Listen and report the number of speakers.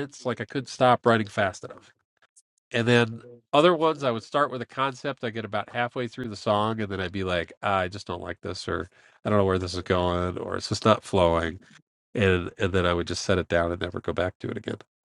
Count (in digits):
1